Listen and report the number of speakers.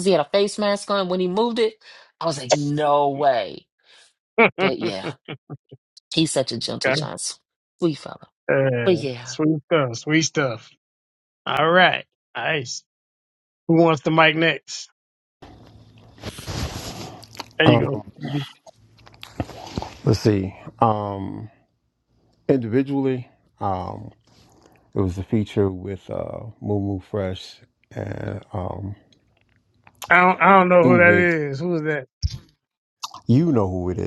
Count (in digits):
3